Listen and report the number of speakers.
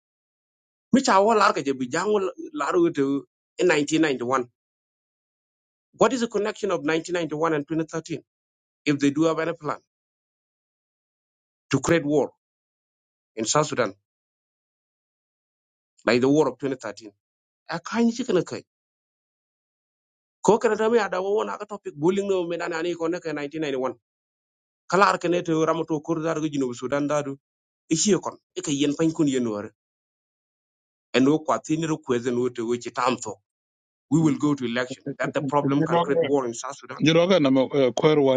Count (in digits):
2